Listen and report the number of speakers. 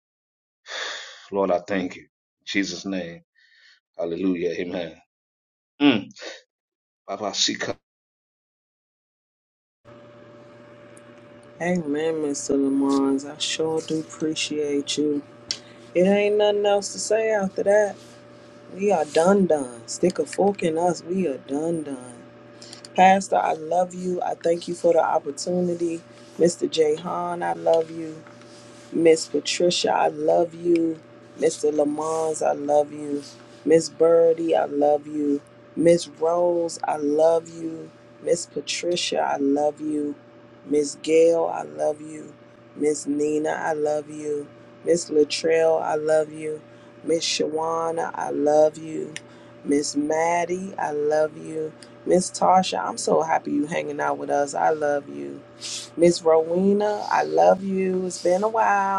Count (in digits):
2